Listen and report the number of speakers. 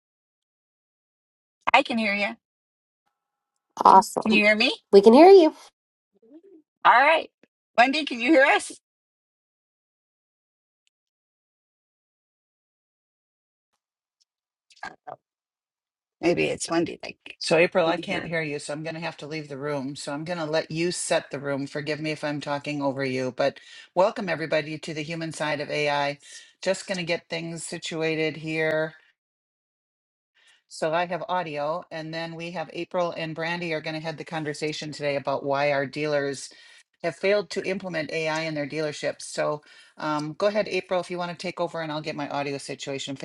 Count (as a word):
three